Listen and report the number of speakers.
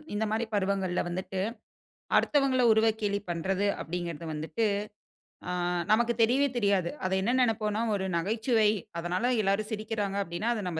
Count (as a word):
one